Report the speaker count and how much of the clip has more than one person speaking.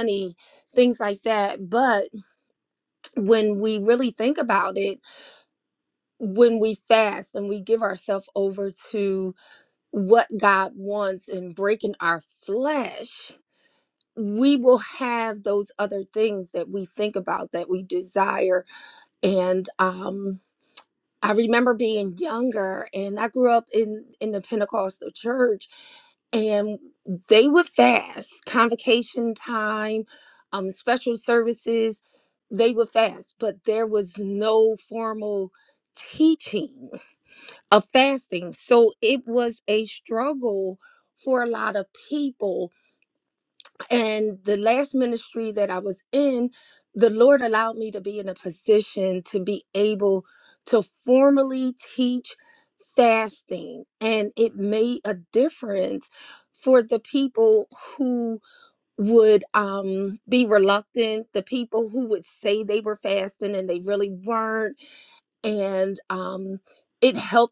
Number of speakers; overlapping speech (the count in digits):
1, no overlap